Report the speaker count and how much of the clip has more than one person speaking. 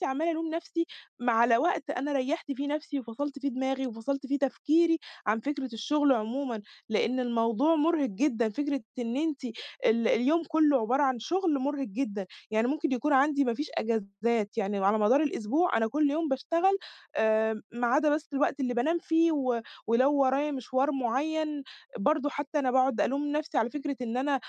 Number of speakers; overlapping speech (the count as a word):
one, no overlap